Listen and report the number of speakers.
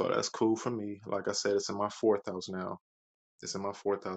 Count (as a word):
one